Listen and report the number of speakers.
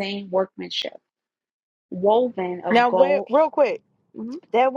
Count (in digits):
2